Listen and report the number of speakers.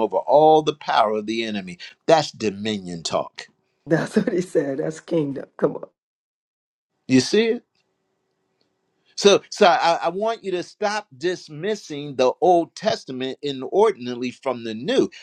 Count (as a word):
two